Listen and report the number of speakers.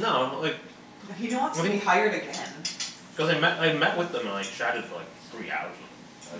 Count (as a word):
two